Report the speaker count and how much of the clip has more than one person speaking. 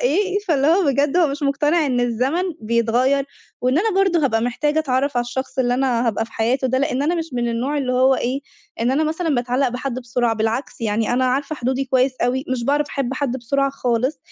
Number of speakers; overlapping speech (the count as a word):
one, no overlap